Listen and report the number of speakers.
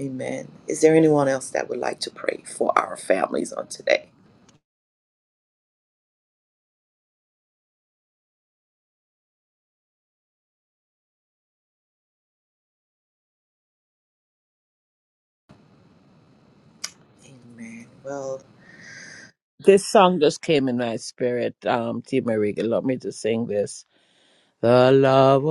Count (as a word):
two